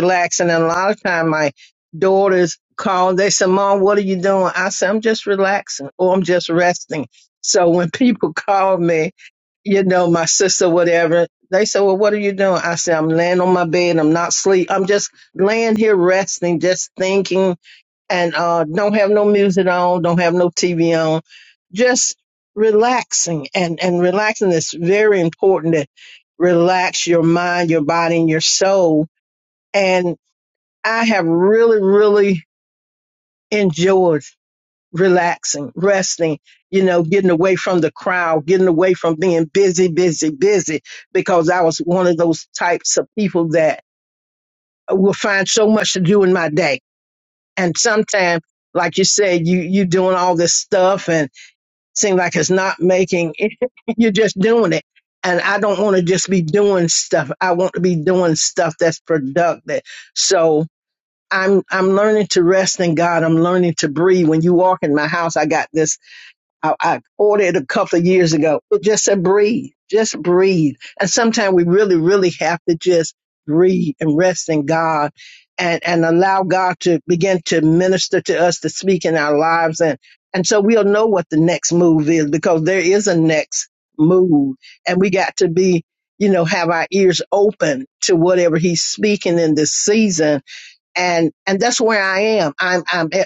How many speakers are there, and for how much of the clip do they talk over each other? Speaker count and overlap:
one, no overlap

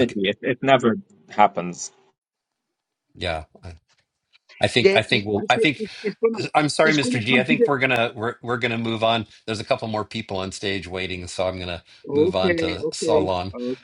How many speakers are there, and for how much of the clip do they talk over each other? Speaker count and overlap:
three, about 25%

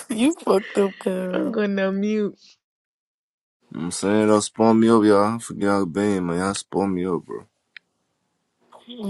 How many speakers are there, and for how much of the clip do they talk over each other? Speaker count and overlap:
three, about 3%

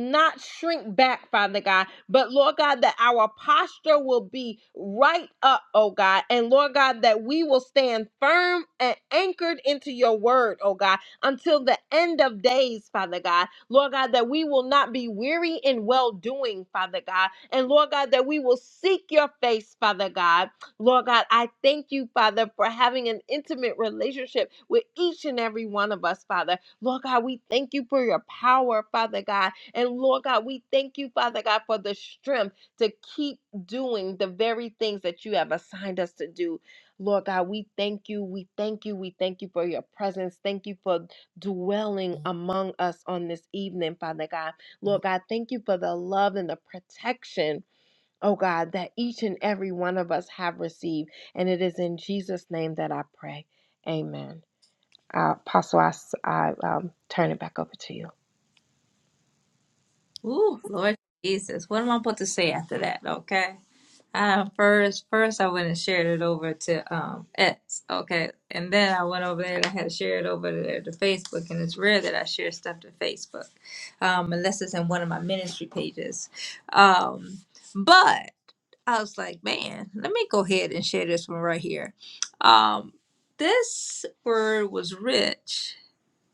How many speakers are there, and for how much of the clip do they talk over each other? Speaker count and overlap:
two, no overlap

